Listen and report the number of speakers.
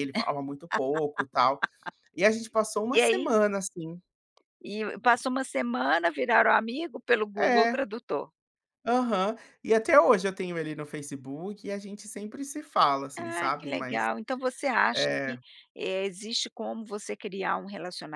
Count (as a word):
two